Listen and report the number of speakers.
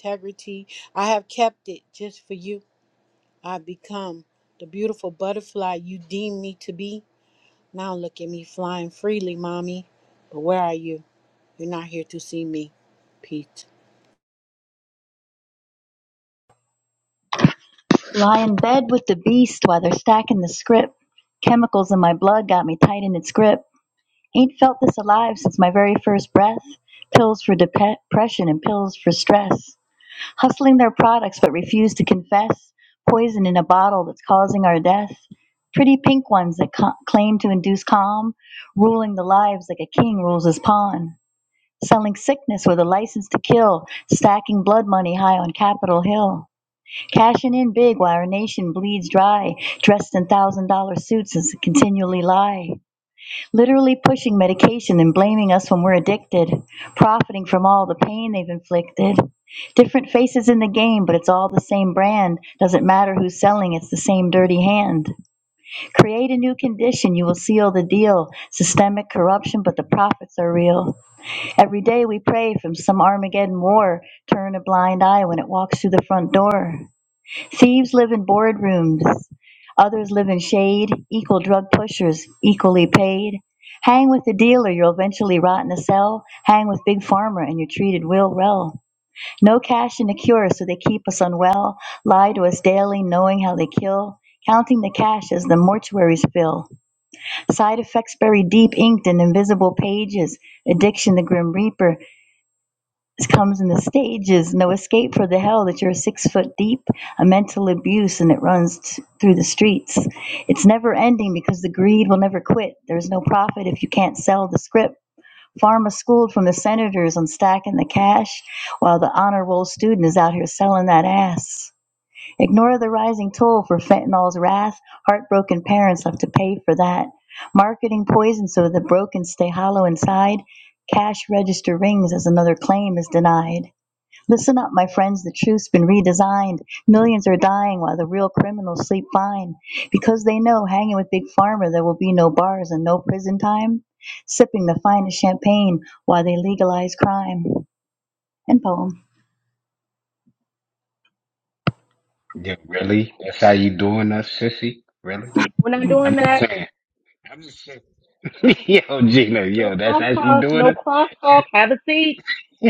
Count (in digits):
4